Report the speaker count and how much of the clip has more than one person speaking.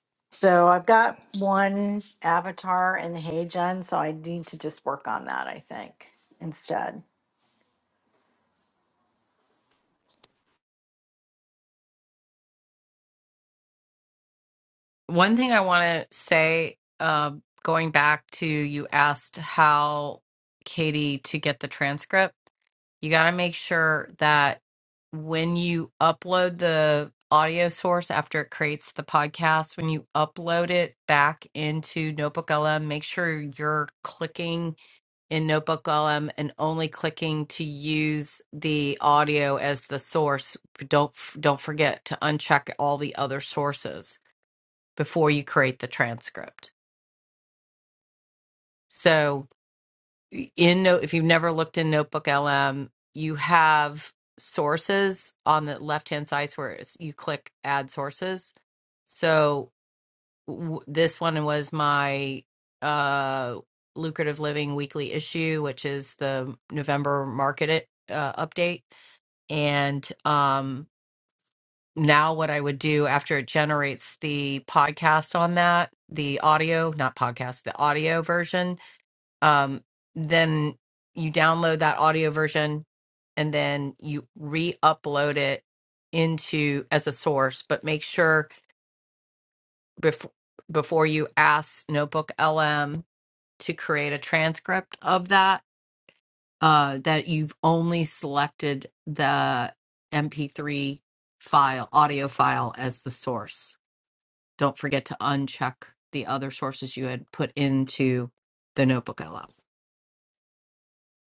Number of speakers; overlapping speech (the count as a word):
two, no overlap